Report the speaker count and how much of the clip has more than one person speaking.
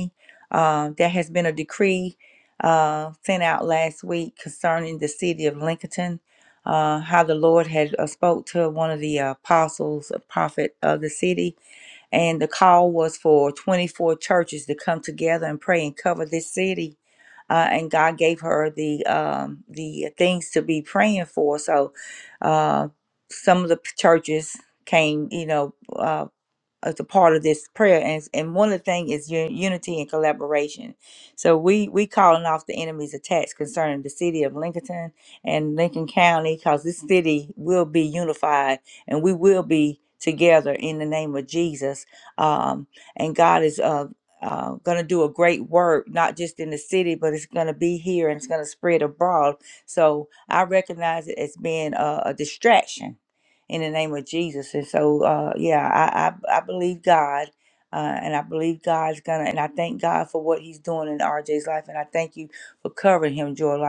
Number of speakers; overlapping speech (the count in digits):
1, no overlap